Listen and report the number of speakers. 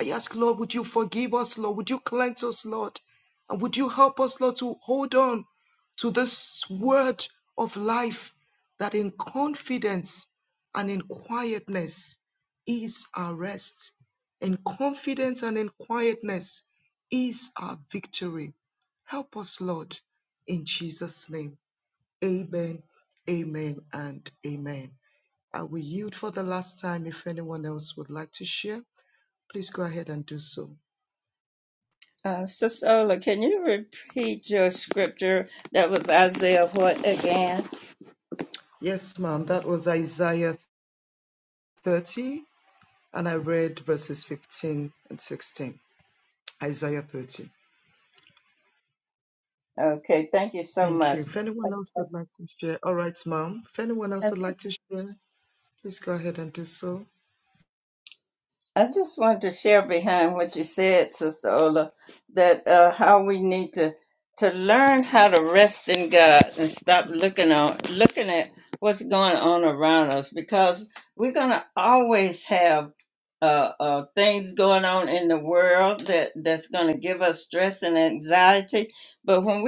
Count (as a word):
two